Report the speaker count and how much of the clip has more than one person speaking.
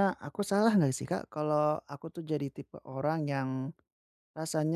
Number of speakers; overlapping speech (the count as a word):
one, no overlap